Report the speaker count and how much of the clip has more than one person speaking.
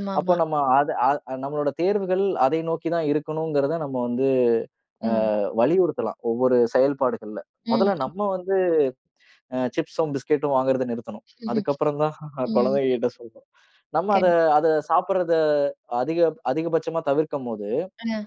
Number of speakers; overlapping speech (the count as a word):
two, about 7%